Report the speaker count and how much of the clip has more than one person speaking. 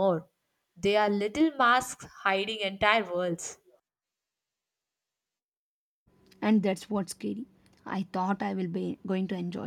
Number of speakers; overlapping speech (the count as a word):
two, no overlap